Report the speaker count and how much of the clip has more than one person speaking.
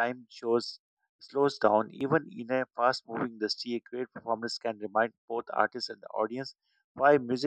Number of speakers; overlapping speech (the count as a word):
one, no overlap